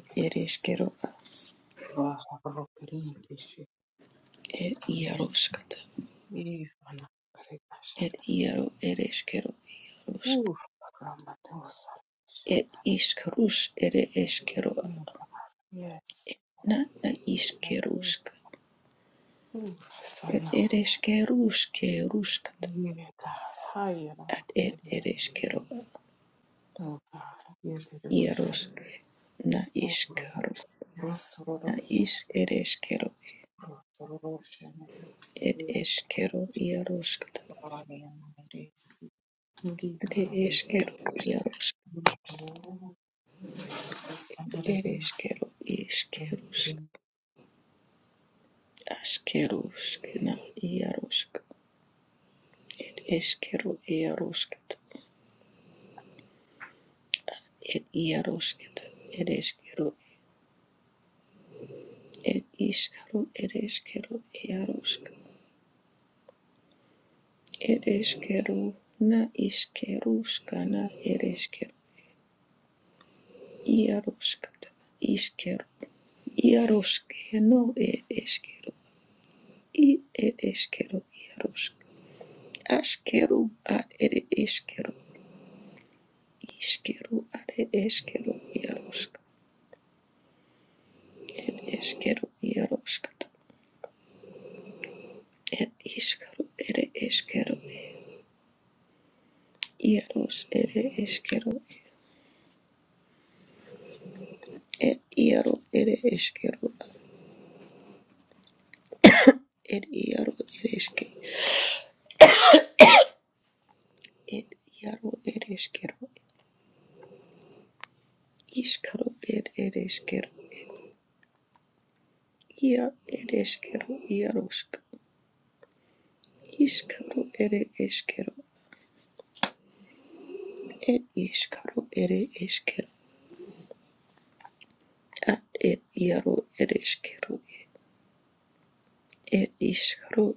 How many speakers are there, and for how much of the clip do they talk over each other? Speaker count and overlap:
2, about 3%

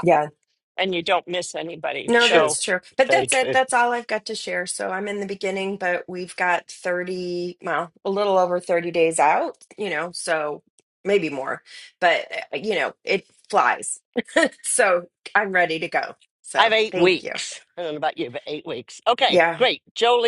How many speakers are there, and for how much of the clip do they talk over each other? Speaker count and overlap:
3, about 10%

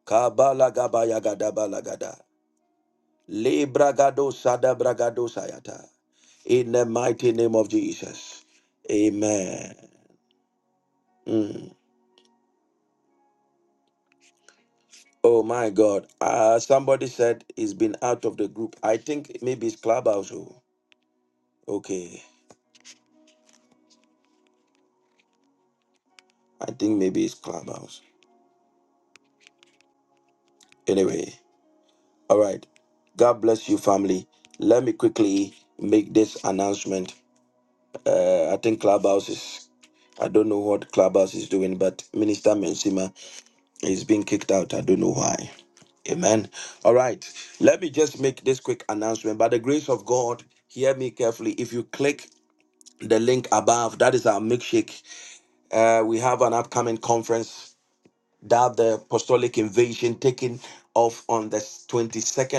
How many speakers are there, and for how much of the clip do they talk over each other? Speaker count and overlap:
1, no overlap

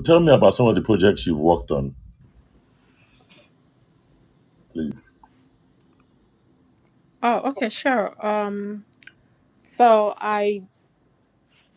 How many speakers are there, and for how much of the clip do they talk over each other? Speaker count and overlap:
2, no overlap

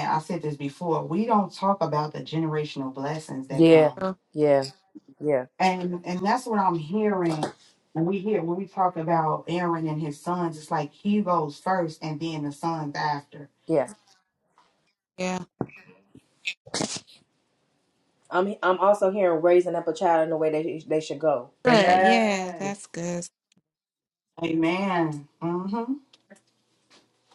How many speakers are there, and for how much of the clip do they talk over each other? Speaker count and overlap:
3, about 5%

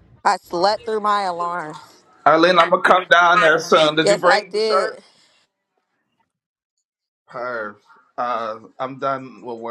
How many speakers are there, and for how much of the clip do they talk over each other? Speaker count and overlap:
2, about 9%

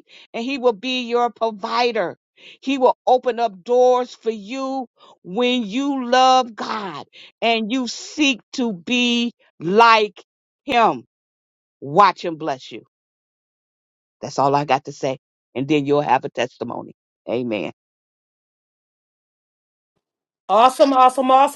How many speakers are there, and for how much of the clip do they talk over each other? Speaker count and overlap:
2, no overlap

